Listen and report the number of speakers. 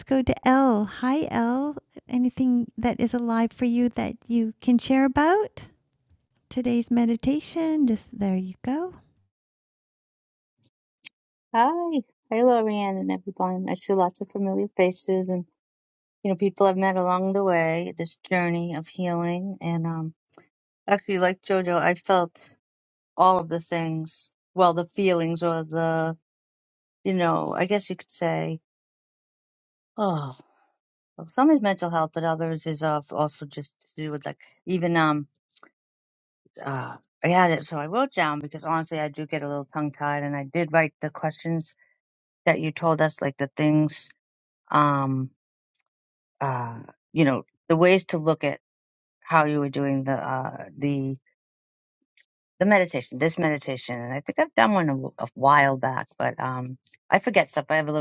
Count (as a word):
two